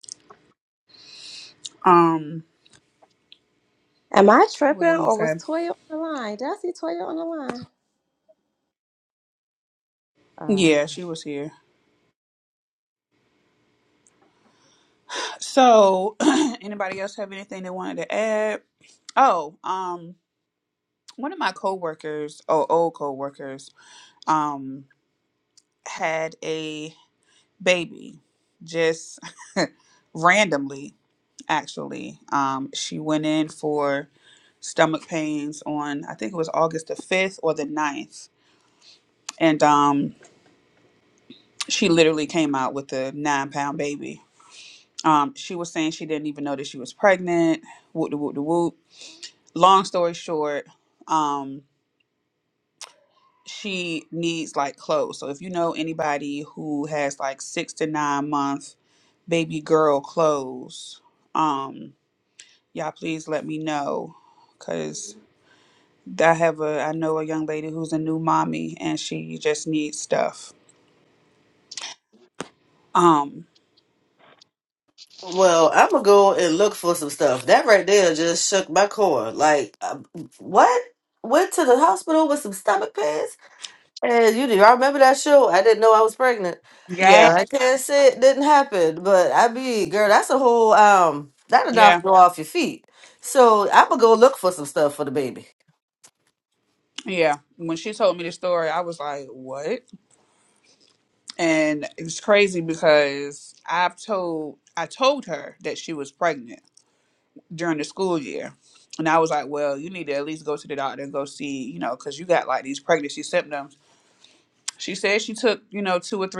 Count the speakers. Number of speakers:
three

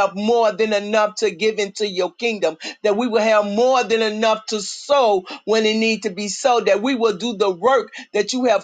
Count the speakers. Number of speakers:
one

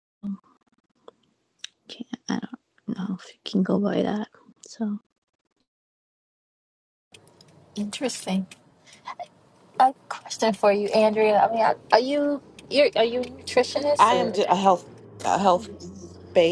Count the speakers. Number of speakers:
three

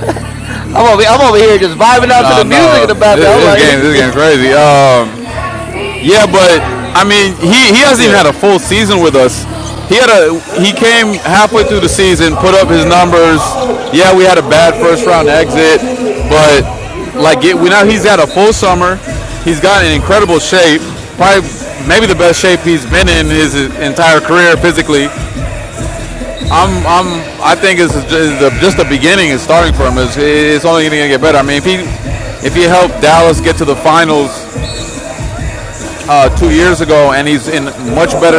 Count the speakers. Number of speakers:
two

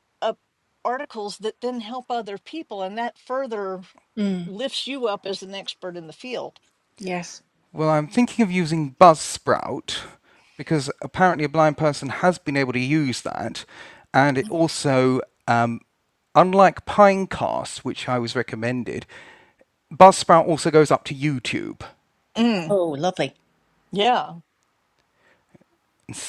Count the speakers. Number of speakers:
three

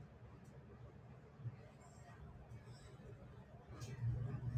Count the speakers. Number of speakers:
zero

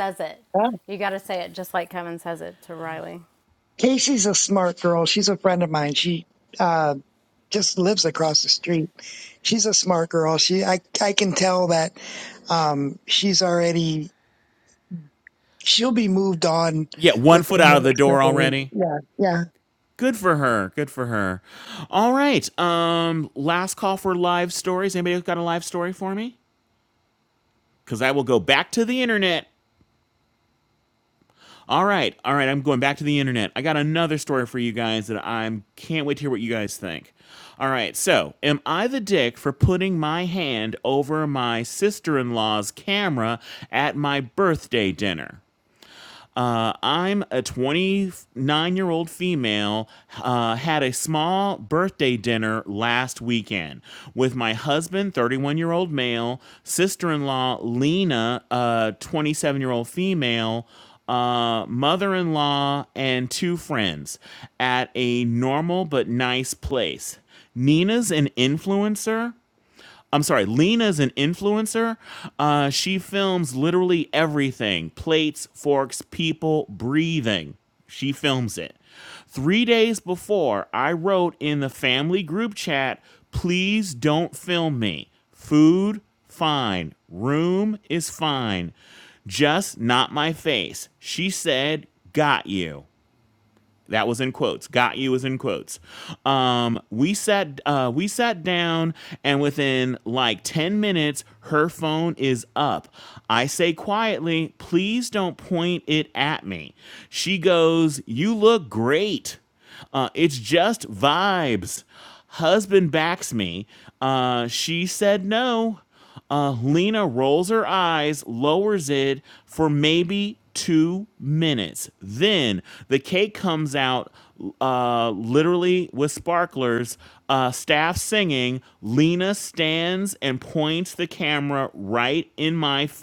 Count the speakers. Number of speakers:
three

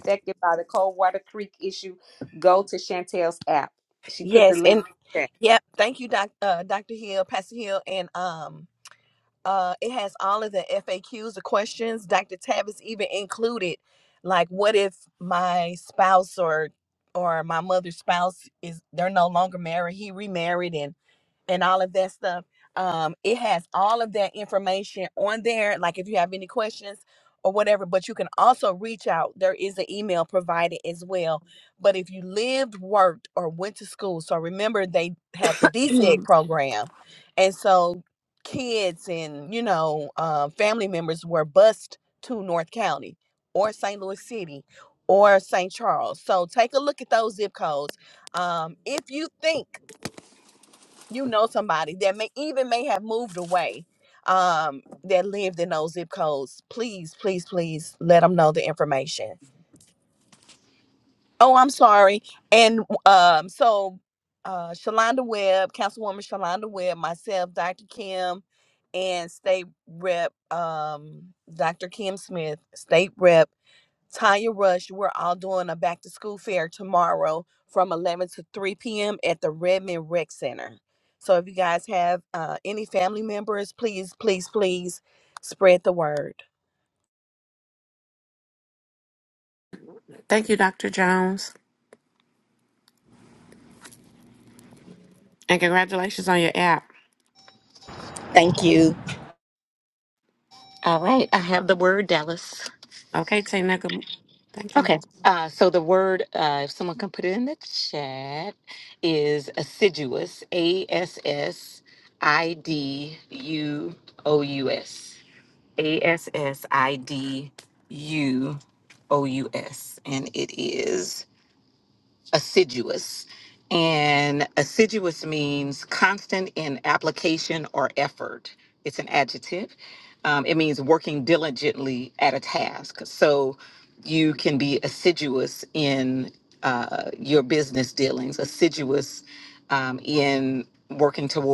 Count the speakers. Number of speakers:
four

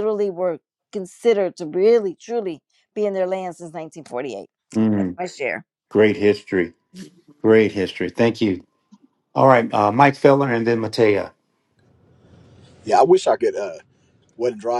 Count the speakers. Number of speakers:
three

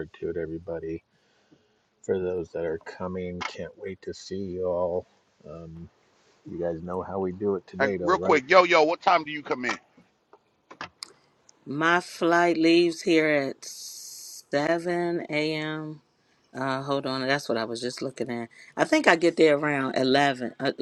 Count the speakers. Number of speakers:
three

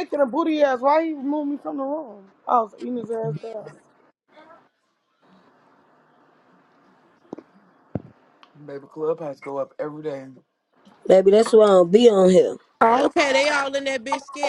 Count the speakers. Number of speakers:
four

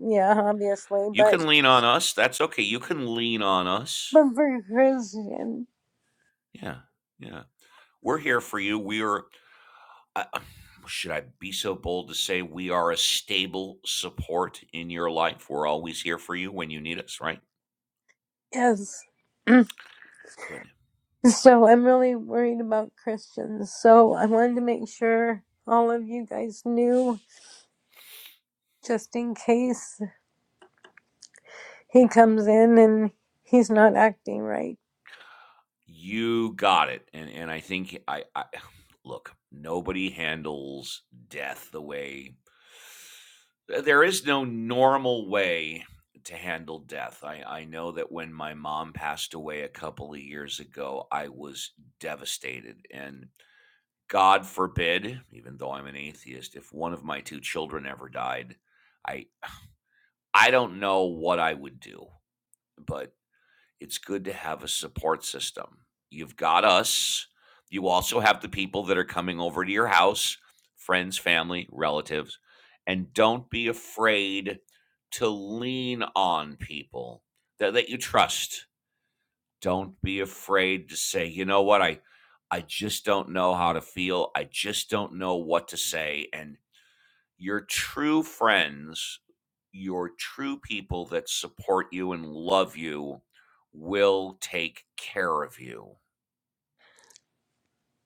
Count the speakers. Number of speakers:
two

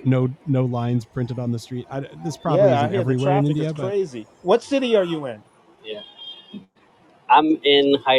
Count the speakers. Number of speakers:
three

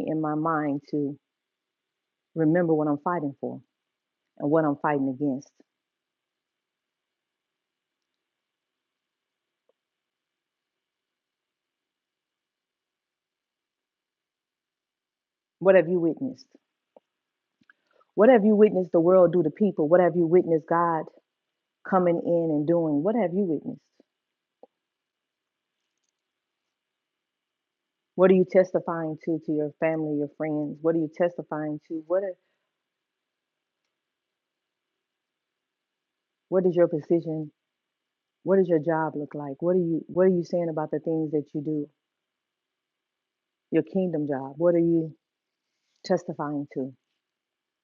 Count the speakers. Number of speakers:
one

